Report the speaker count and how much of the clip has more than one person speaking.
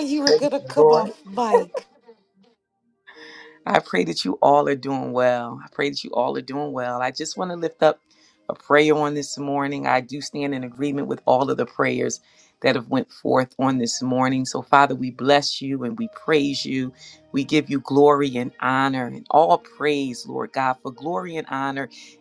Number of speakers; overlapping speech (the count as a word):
two, about 4%